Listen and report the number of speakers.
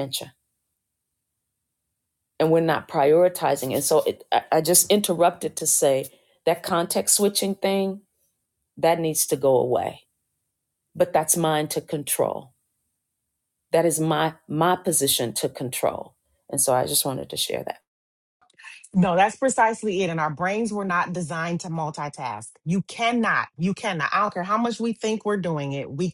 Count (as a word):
two